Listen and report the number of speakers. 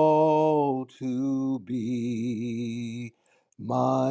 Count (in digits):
1